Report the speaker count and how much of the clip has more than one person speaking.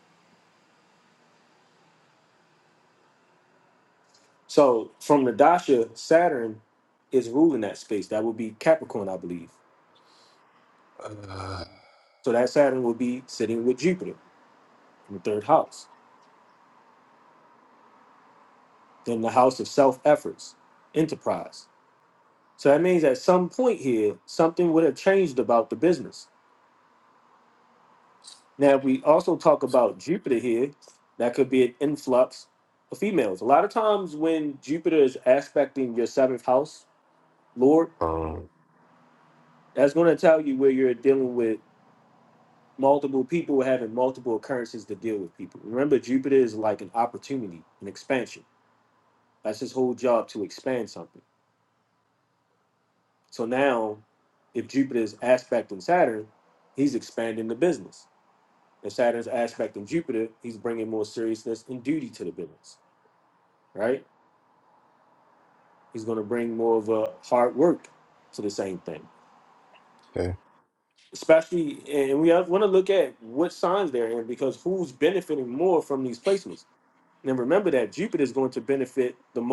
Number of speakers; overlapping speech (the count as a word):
two, no overlap